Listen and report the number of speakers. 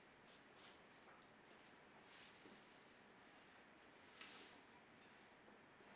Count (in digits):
0